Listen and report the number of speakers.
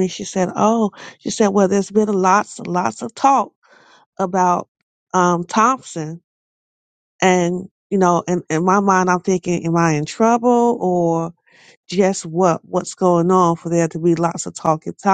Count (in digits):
1